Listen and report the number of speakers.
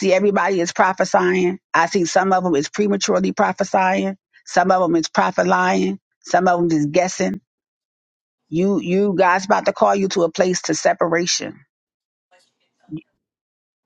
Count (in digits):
1